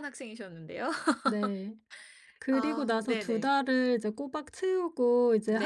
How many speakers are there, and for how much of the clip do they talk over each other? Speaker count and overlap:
2, about 19%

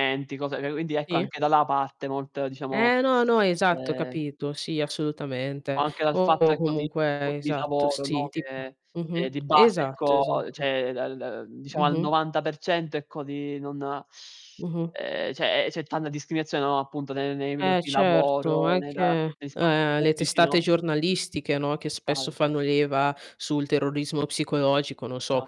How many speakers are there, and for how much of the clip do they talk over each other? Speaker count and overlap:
2, about 29%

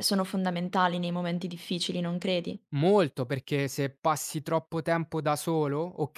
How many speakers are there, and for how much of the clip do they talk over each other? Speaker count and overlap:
2, no overlap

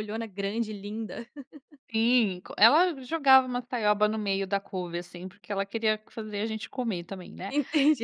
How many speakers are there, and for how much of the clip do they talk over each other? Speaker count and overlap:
2, under 1%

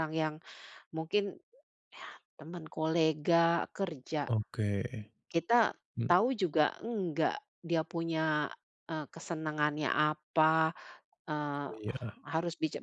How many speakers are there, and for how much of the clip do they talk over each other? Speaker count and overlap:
2, about 1%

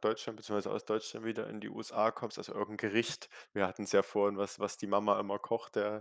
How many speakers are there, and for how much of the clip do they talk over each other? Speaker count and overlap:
1, no overlap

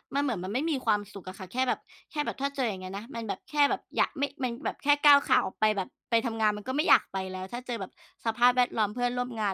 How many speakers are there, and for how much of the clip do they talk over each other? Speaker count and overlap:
1, no overlap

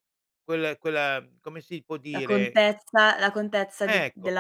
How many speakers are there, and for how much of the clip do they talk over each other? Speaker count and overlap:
2, about 20%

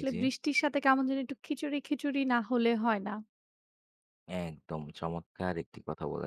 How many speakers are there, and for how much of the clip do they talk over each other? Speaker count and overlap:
2, about 4%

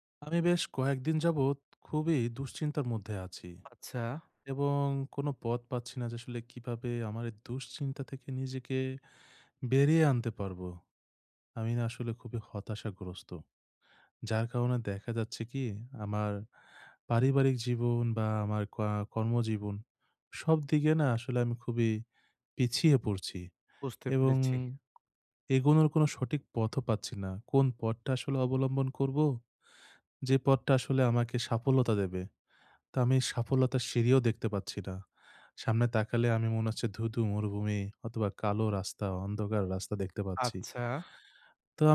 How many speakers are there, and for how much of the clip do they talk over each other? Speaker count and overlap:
2, about 1%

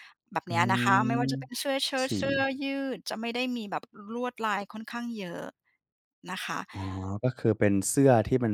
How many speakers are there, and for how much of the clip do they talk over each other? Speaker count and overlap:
2, about 6%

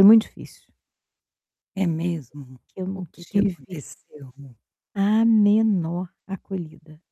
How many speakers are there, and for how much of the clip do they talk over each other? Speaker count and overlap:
2, about 12%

